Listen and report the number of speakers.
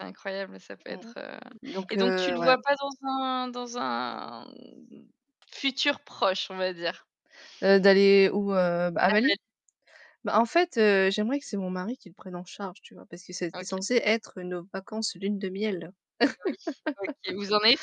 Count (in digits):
2